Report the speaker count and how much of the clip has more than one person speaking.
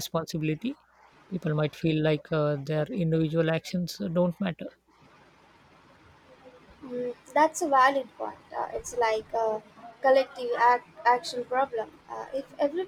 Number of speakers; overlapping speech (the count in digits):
2, no overlap